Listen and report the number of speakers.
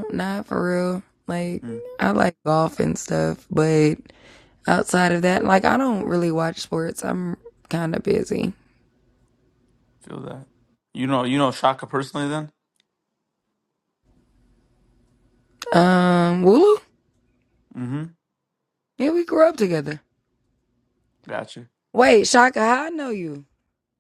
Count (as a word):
two